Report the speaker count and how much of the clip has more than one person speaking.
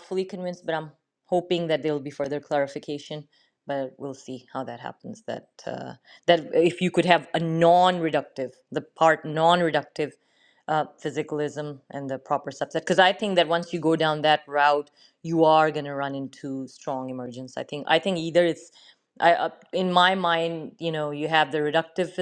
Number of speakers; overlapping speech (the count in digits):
1, no overlap